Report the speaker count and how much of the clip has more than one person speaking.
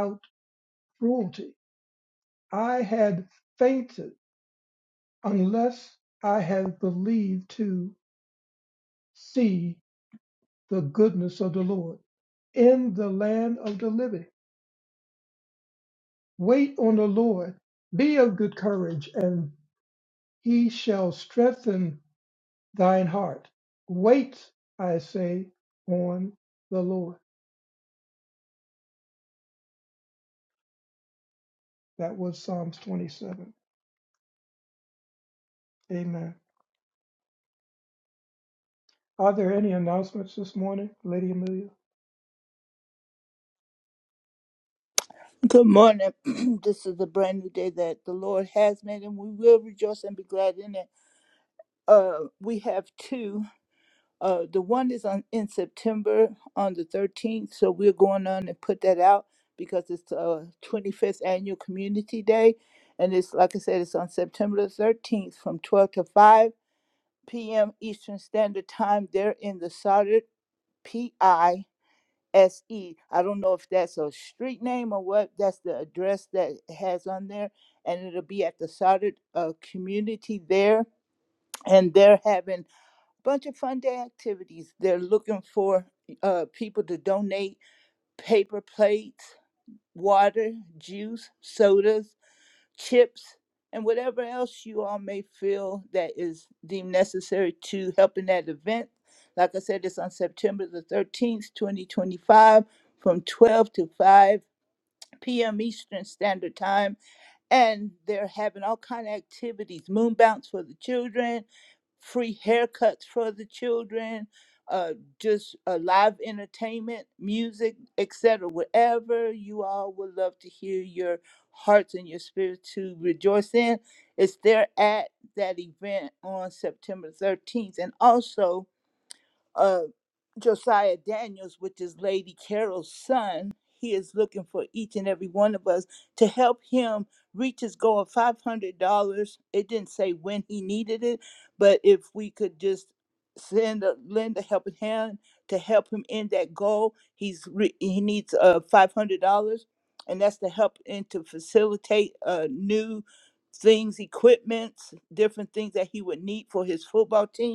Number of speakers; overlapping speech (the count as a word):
two, no overlap